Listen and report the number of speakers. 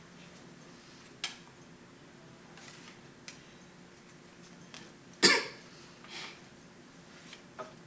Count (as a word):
zero